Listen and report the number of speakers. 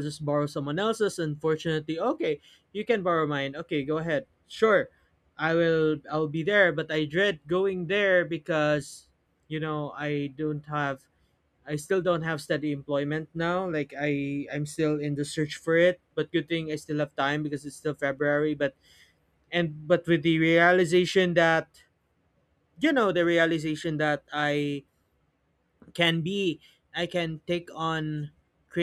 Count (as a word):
one